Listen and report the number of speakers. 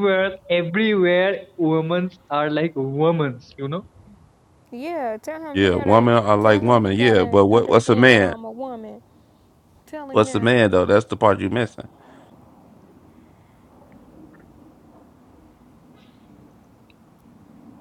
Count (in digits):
3